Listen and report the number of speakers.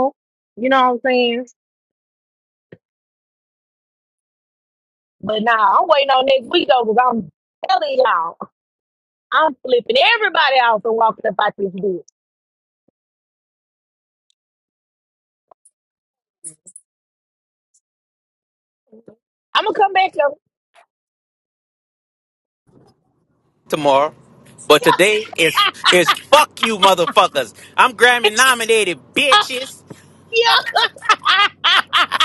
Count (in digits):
2